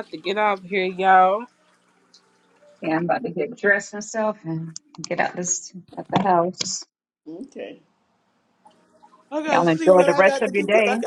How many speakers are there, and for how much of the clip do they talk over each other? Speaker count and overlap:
3, about 14%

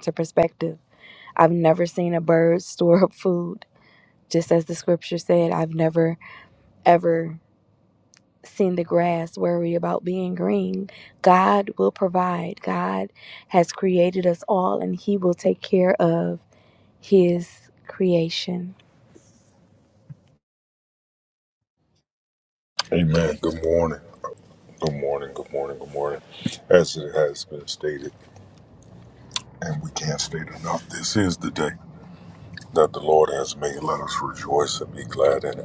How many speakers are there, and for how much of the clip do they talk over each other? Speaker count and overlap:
2, no overlap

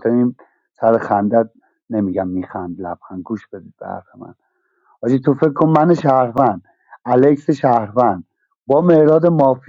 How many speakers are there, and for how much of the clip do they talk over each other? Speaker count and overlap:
1, no overlap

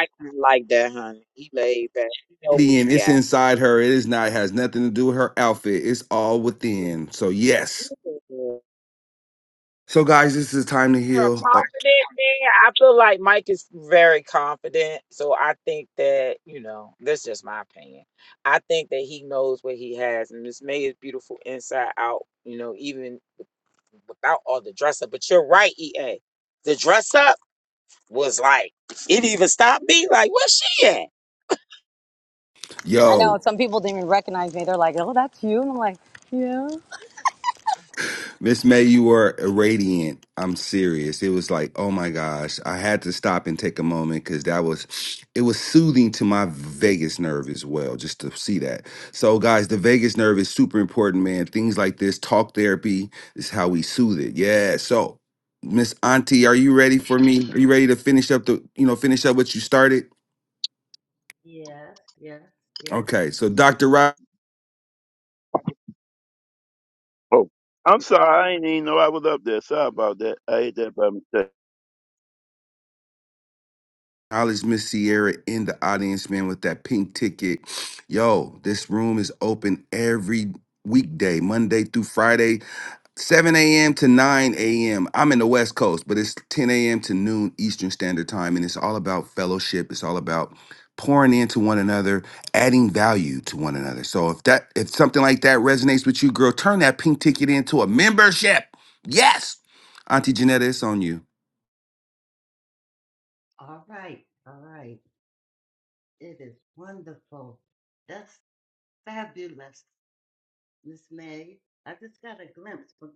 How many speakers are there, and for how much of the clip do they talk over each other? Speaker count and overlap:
5, about 1%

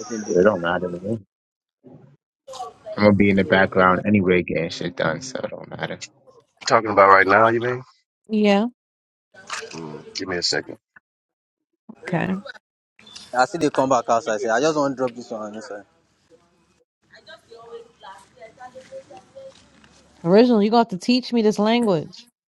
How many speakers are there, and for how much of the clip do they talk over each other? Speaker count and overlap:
4, about 1%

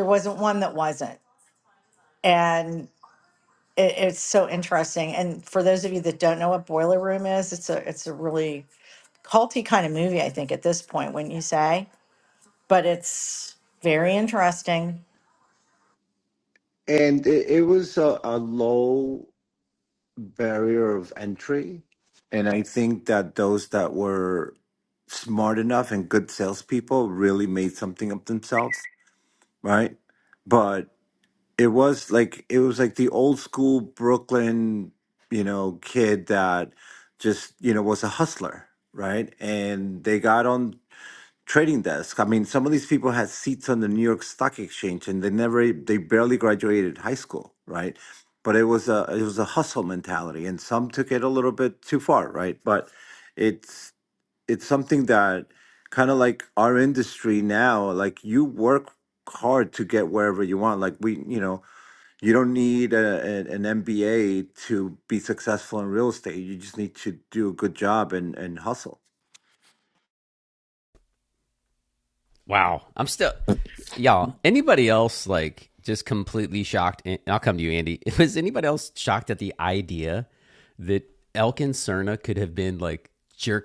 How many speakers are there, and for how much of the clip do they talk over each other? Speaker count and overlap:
3, no overlap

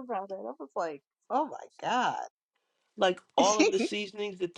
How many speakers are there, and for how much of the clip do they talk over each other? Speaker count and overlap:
2, no overlap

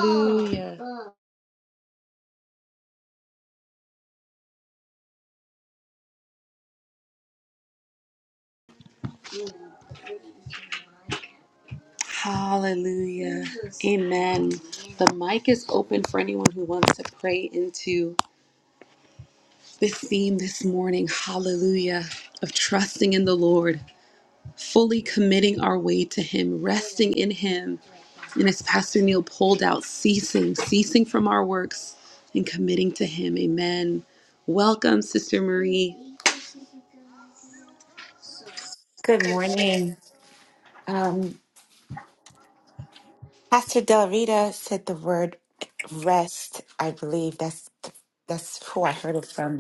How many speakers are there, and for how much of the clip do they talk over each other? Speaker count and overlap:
2, no overlap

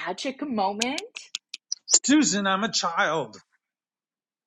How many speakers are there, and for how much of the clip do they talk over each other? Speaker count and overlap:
2, no overlap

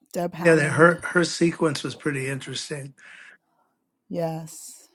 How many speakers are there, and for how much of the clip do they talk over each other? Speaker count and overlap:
2, about 12%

